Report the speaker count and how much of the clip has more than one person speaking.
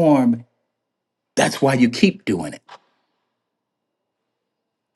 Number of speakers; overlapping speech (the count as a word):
one, no overlap